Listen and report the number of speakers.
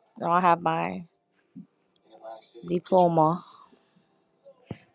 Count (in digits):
1